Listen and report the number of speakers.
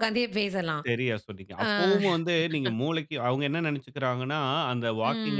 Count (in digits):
2